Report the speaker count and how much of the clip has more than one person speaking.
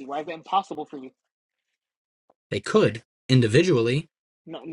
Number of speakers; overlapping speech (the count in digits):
2, no overlap